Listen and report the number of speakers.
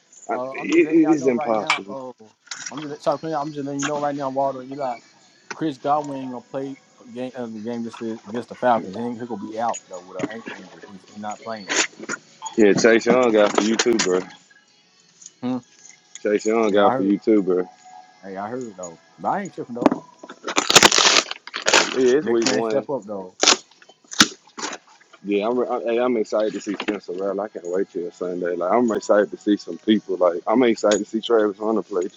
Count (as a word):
two